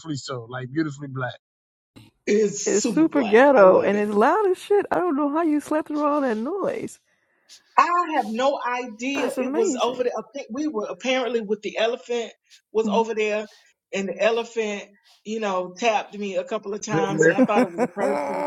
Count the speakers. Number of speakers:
3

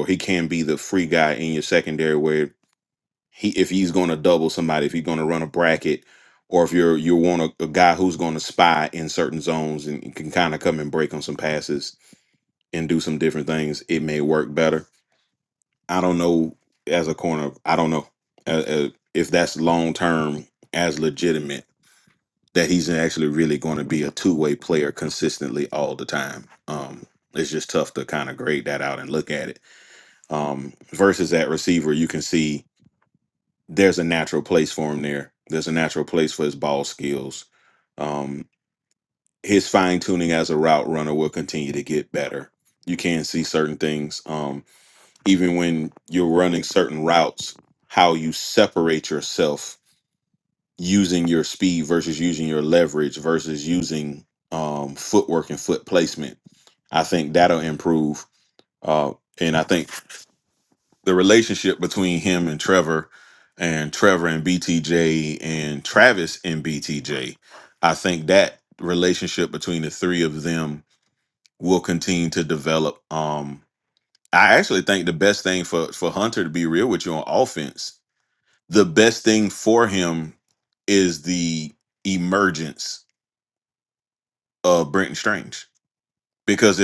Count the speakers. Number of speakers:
1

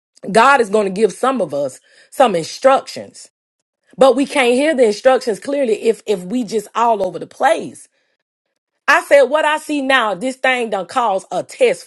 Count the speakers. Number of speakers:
1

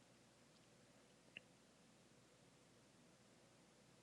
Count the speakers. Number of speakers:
0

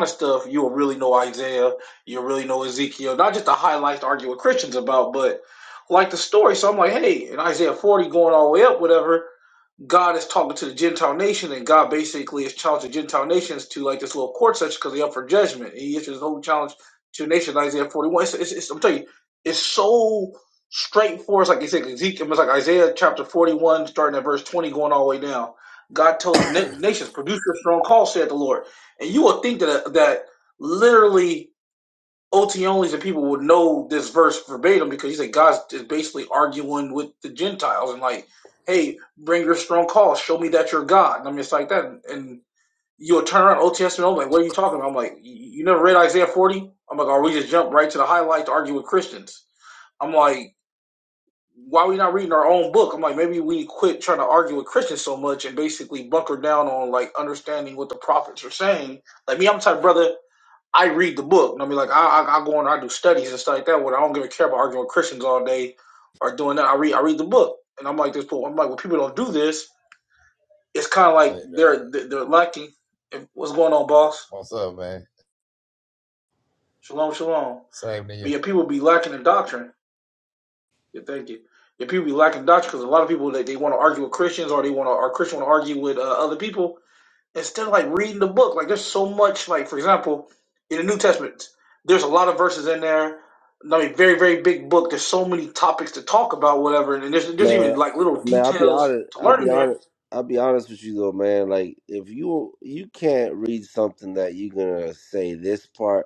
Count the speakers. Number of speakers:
3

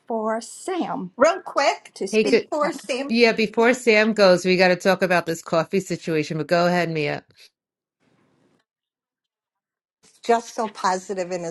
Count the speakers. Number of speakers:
3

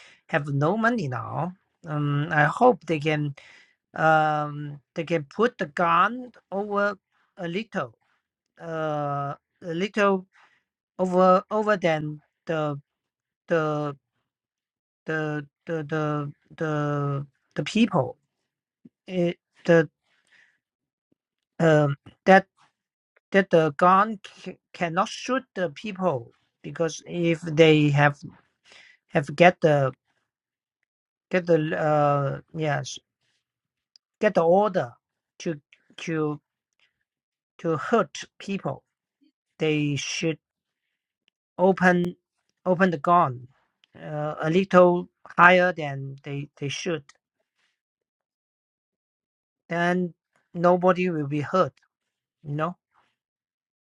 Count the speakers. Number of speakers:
1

